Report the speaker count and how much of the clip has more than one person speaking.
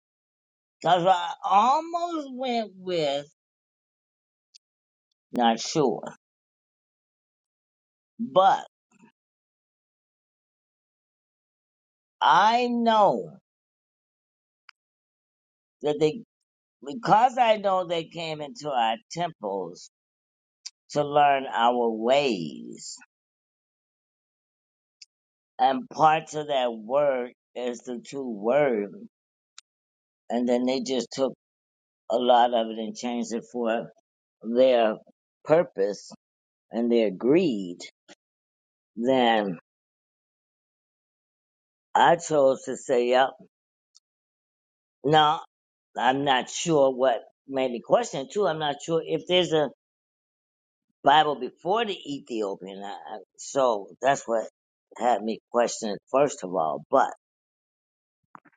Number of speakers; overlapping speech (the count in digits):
1, no overlap